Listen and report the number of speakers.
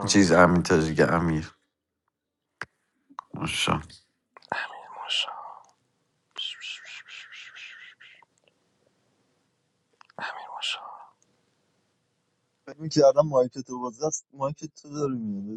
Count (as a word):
three